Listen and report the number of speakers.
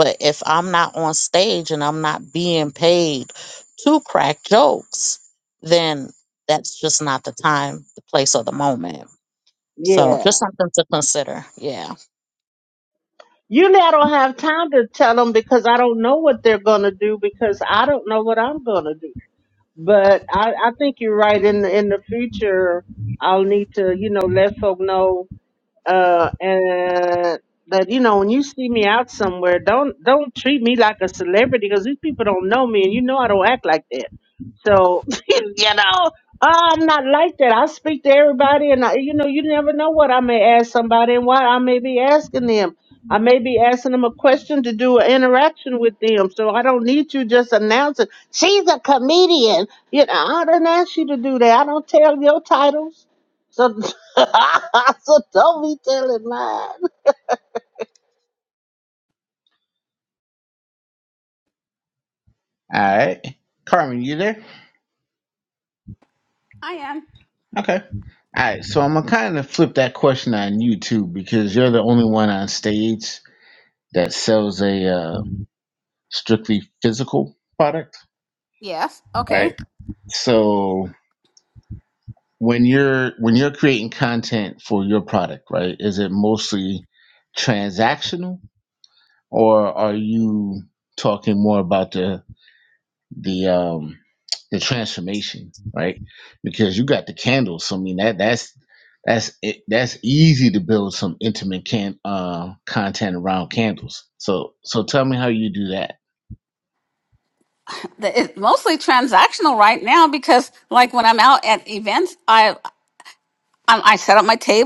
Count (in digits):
4